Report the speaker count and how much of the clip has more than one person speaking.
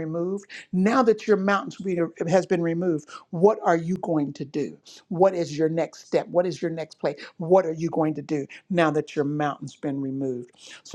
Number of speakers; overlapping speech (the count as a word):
one, no overlap